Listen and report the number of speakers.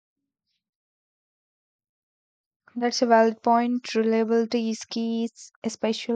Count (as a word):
one